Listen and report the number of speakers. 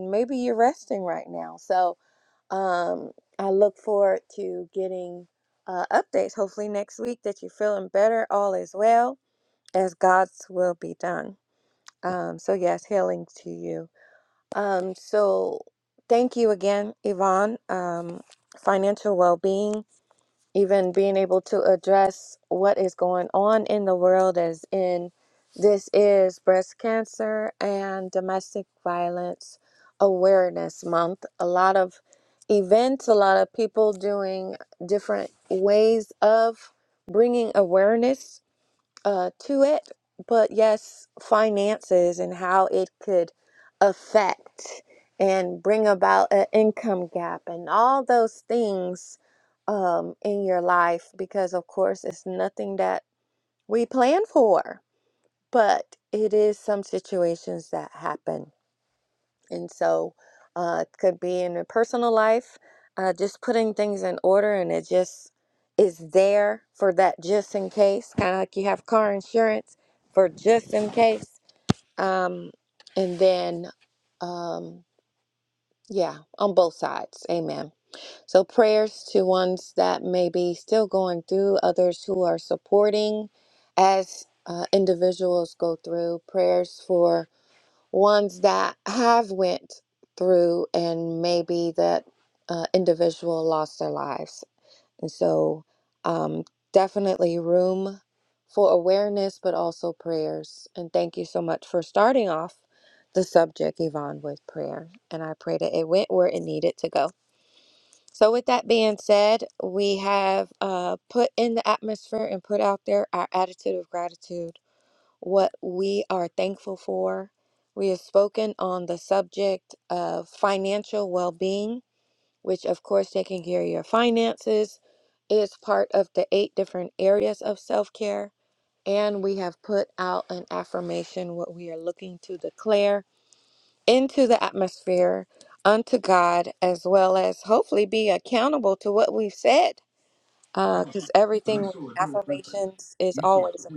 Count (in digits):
1